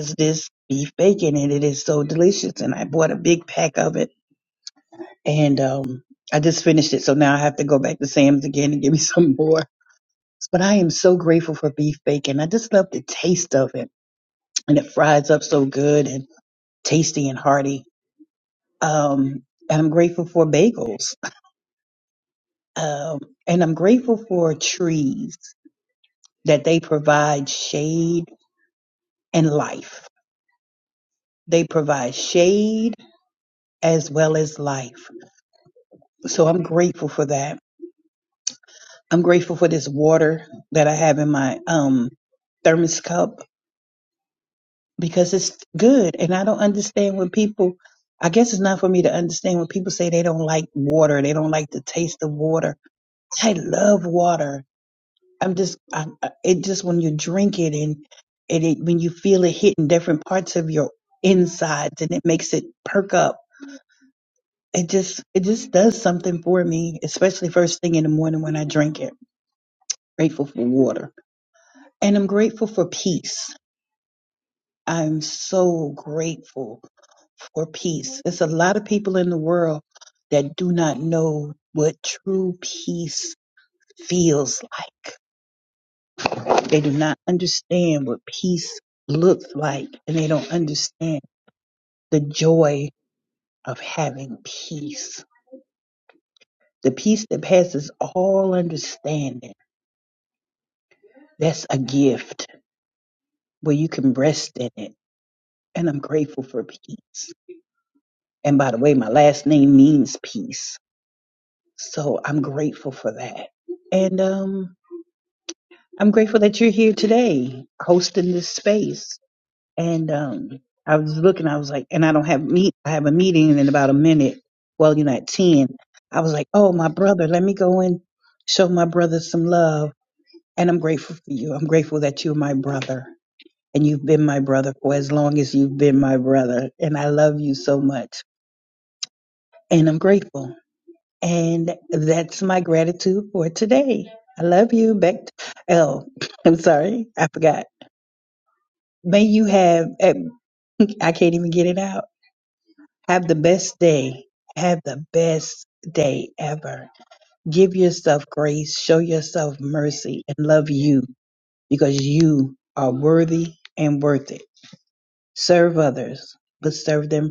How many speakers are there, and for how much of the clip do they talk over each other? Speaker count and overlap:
1, no overlap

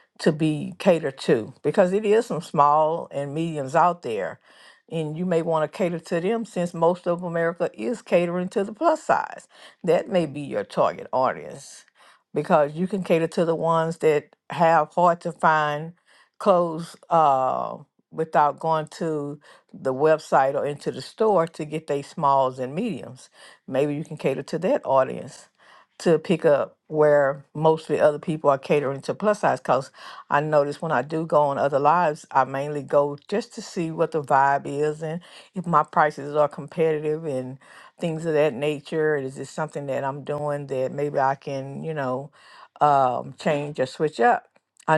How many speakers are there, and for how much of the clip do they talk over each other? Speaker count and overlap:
1, no overlap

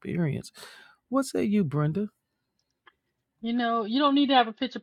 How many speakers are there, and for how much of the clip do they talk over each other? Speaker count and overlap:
2, no overlap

